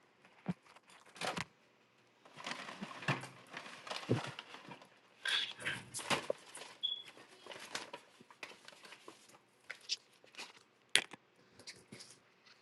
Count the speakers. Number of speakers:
0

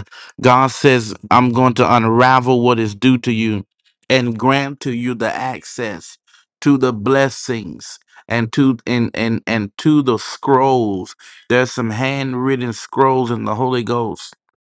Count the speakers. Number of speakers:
1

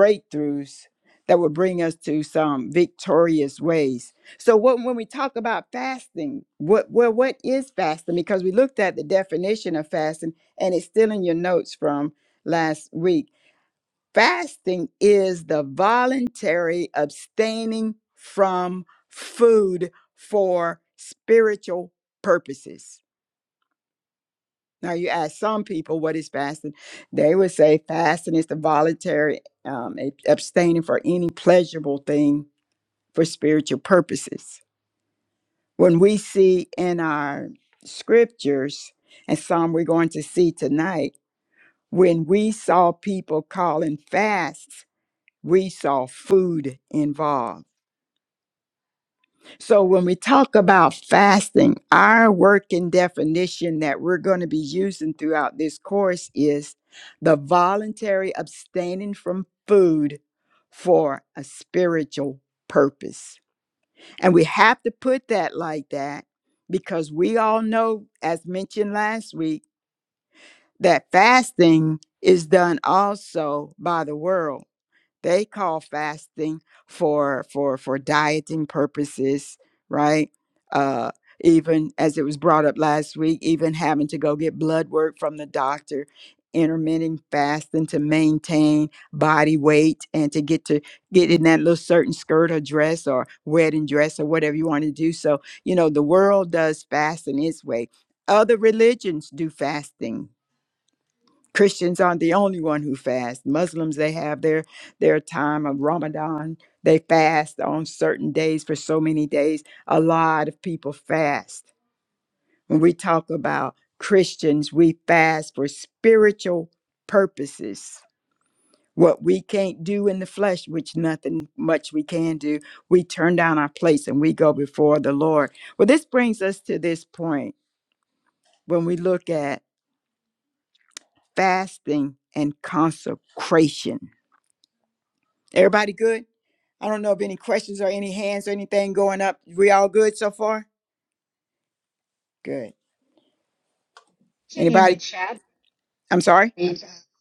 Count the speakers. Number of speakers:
2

